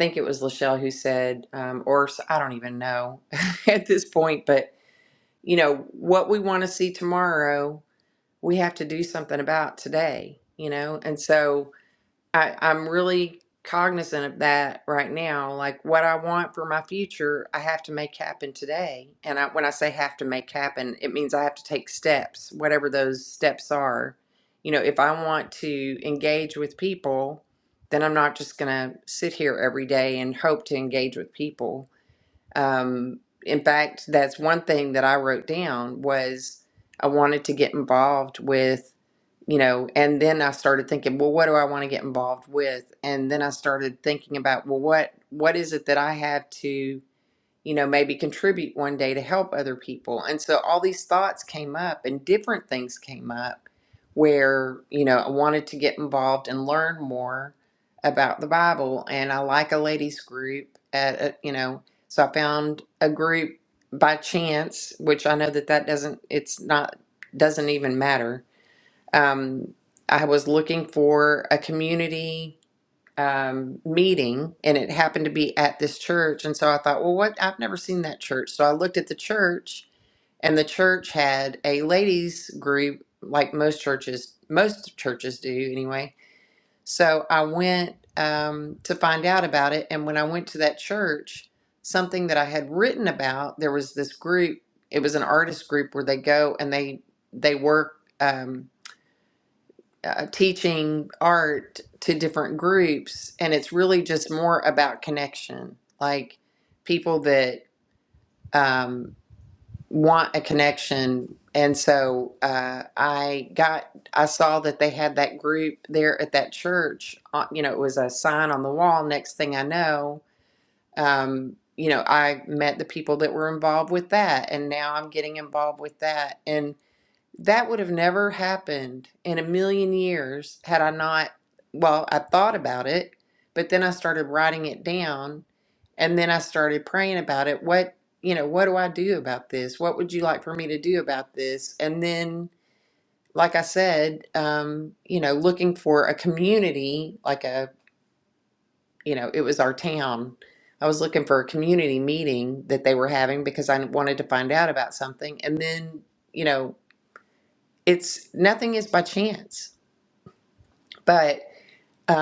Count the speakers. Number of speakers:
1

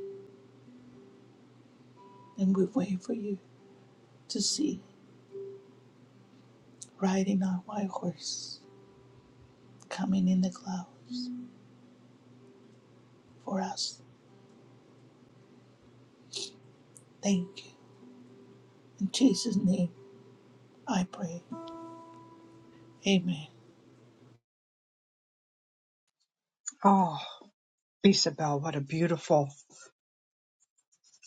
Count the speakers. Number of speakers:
2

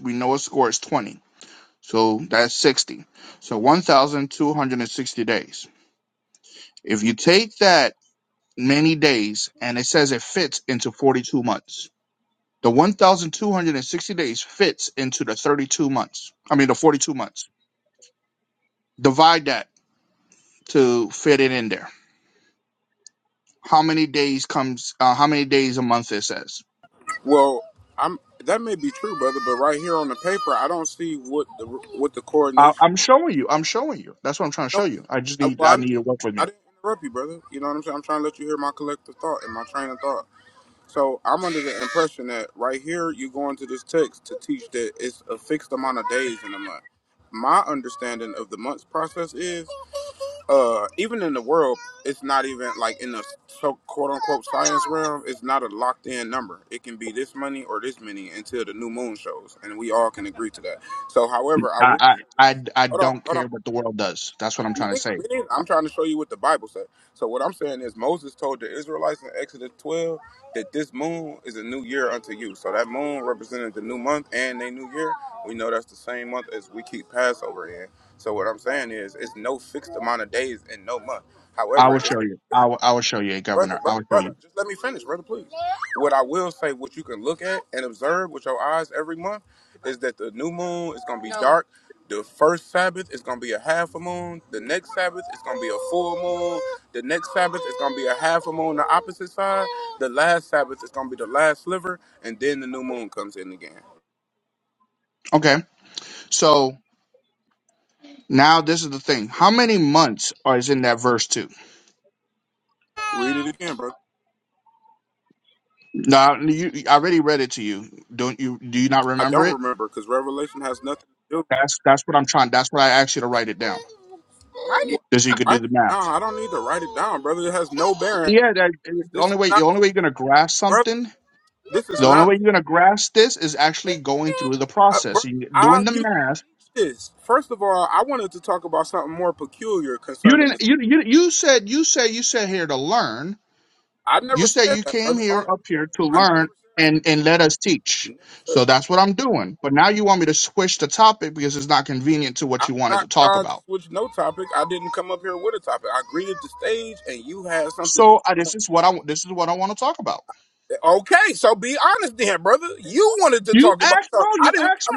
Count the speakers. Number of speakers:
2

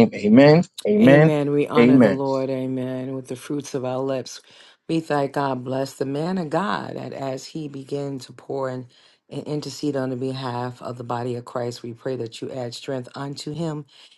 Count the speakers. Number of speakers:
2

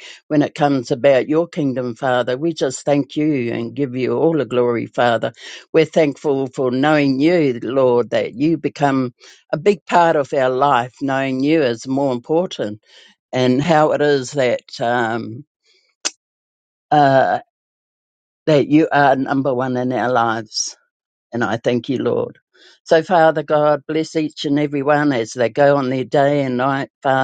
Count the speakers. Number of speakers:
1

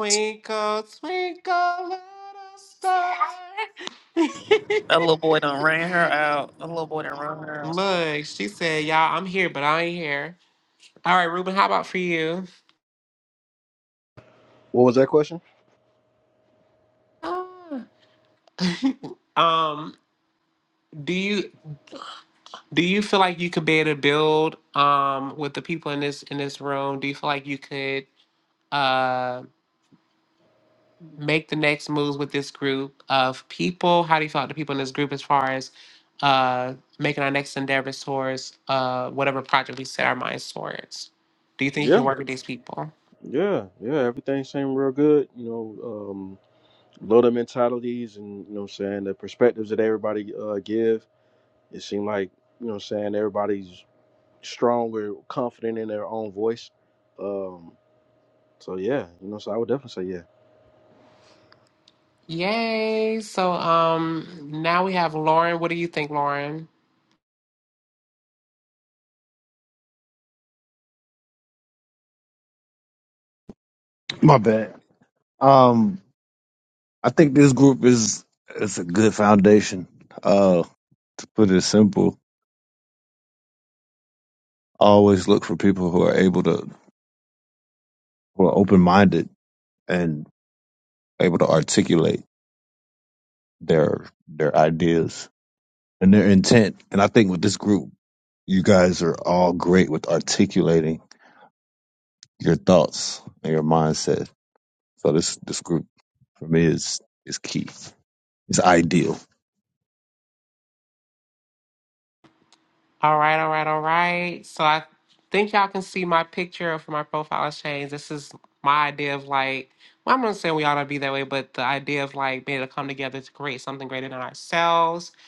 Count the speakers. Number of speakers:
4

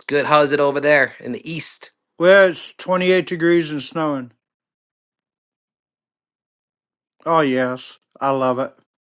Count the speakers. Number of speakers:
2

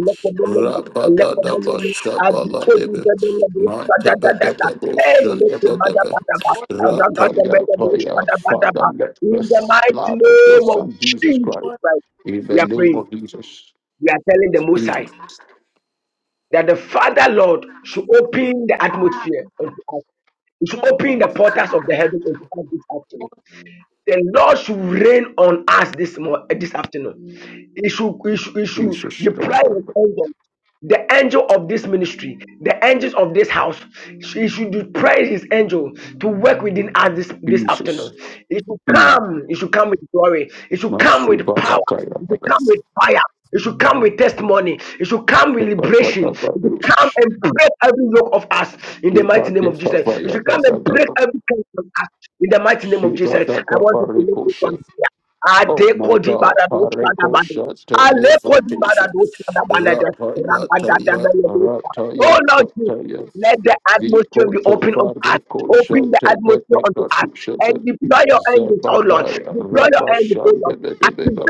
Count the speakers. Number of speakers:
2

